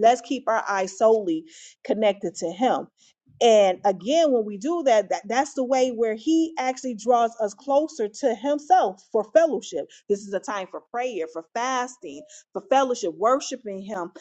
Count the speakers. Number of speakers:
1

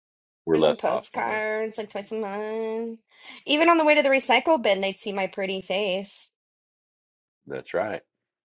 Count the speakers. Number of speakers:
2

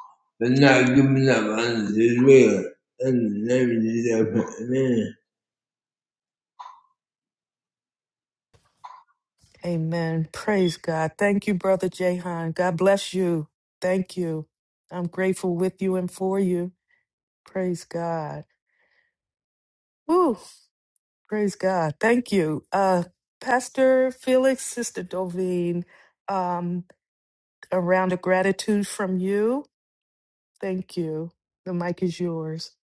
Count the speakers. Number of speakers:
2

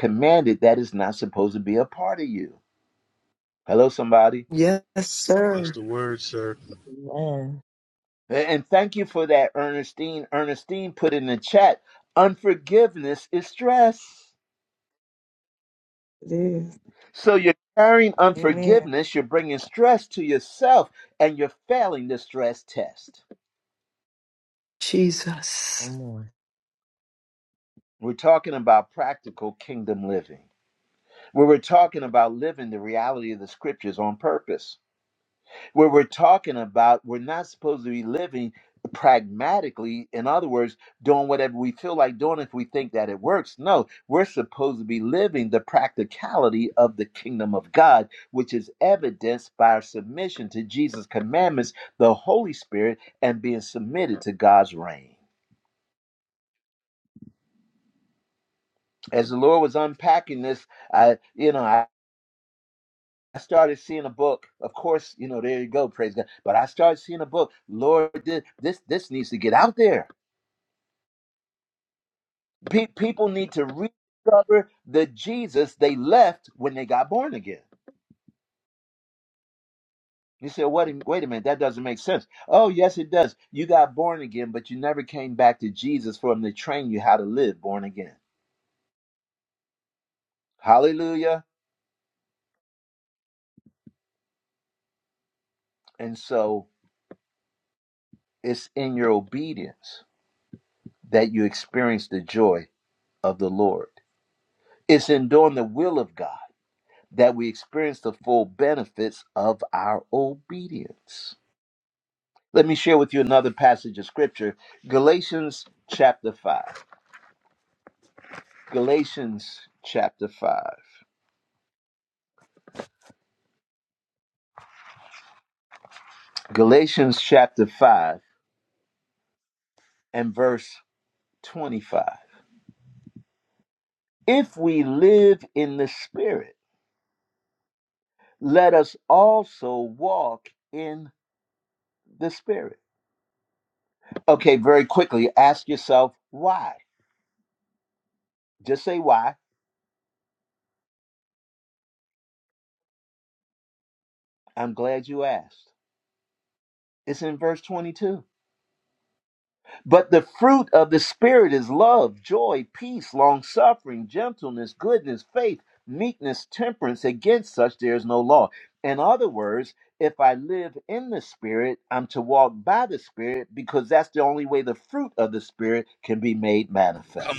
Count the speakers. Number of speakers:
5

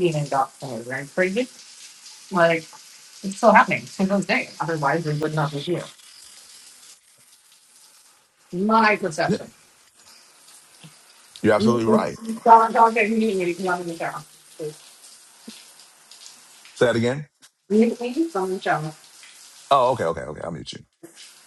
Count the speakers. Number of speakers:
2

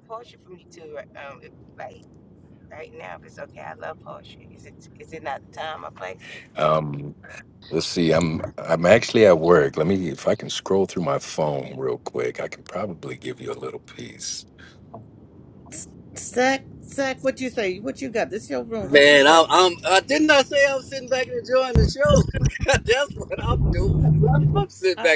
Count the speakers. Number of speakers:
4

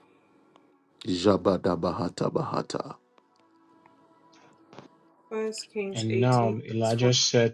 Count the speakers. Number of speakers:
3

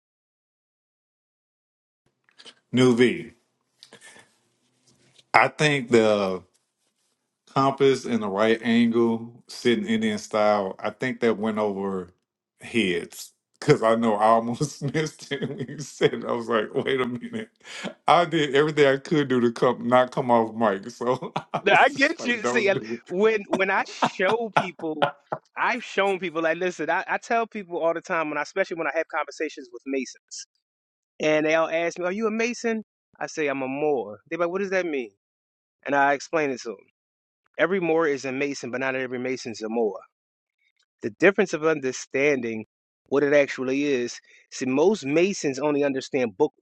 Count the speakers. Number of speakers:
2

